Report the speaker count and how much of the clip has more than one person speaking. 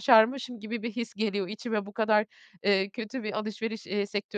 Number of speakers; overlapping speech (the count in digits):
1, no overlap